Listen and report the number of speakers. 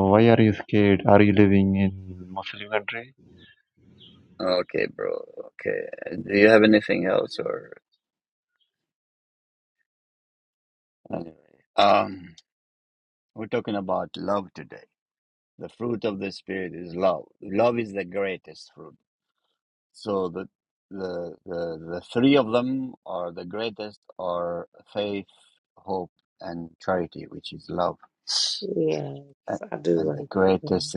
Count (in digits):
3